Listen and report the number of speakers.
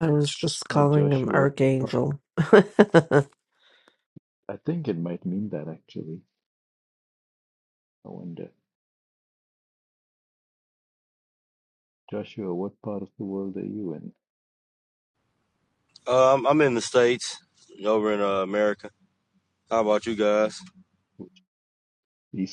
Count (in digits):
3